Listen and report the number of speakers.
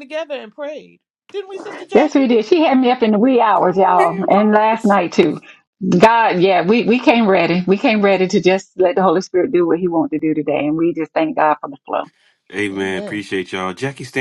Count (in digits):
3